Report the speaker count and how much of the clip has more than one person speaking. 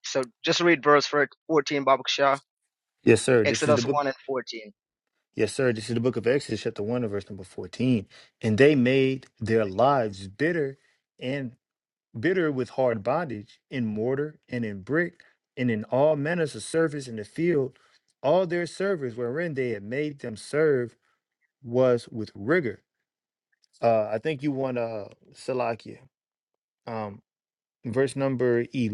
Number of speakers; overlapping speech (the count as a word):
two, about 2%